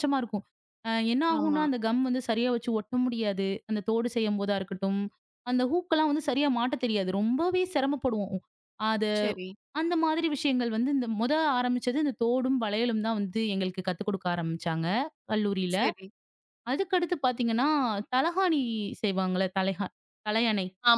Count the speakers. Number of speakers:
2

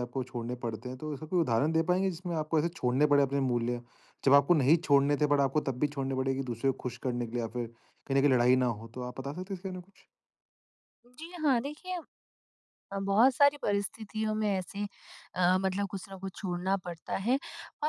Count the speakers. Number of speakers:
2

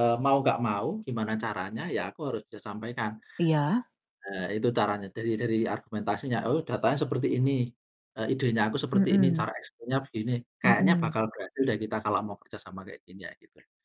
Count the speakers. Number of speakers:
2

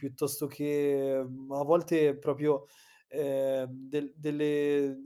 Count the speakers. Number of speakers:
1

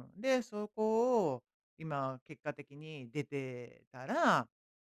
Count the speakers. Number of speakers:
1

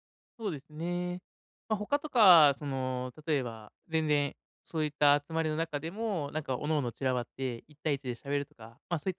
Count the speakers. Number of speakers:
1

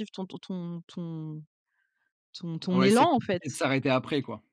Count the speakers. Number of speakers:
2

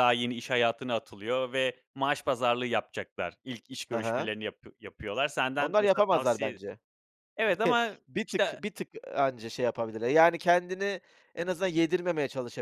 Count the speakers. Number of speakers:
2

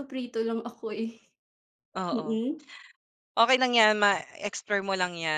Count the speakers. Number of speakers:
2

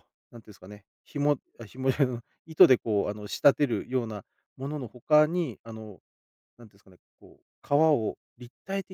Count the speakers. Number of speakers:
1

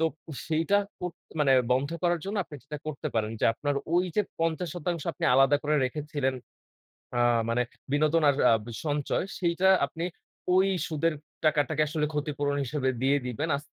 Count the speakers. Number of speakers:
1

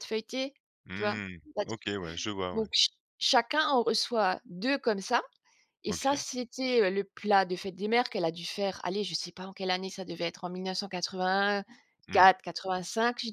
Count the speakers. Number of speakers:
2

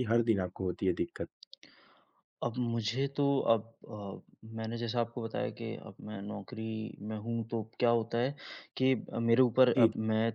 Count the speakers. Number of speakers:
2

